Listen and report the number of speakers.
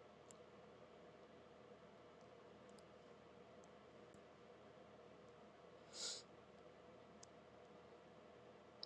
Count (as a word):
zero